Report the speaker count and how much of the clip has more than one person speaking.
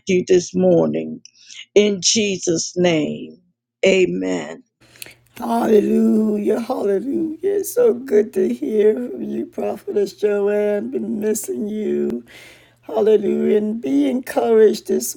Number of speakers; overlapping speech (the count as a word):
two, no overlap